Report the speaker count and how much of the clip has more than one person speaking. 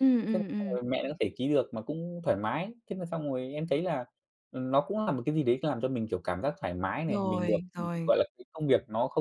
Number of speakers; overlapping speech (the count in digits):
2, about 11%